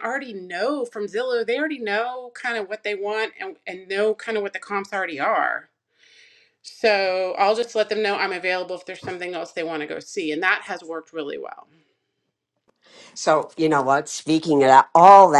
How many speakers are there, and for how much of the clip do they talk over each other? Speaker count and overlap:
2, no overlap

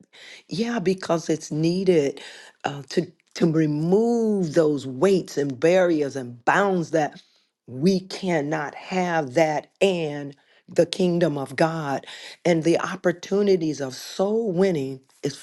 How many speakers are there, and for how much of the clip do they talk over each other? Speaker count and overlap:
1, no overlap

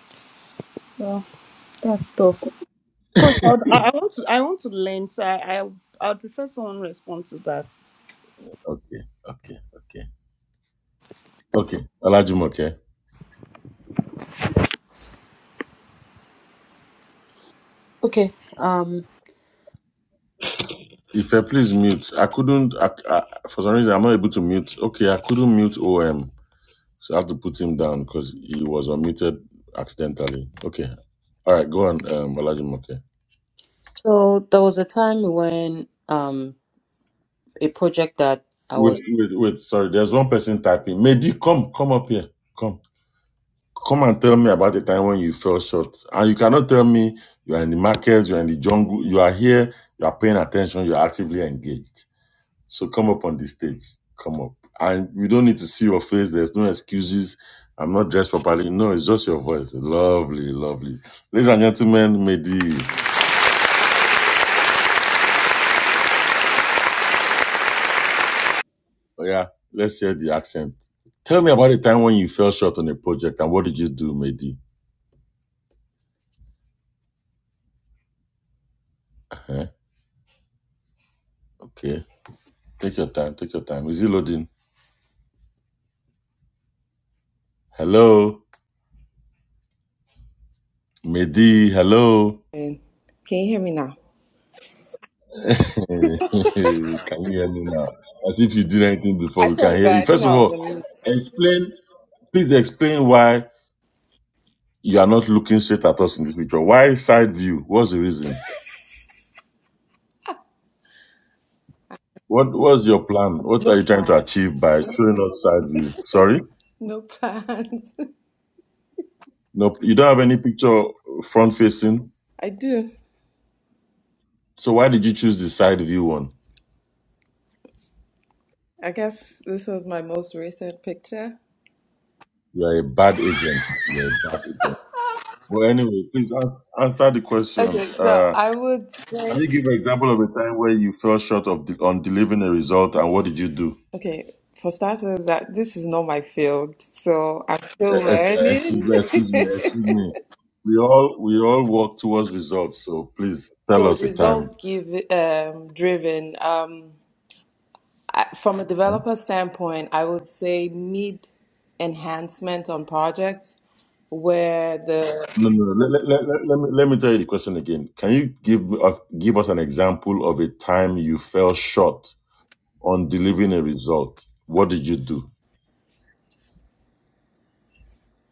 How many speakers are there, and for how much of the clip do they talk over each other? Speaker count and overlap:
4, about 3%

